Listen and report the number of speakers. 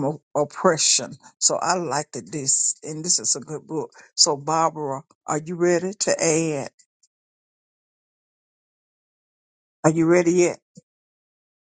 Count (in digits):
1